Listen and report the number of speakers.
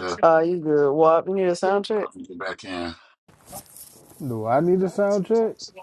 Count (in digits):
3